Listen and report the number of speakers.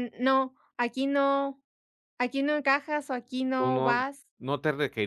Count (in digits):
2